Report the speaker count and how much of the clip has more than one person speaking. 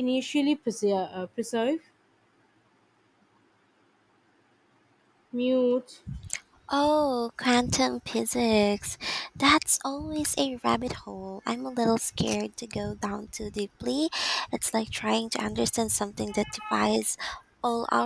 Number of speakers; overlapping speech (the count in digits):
2, no overlap